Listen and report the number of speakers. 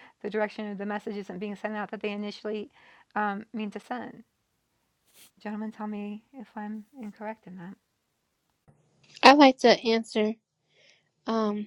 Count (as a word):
two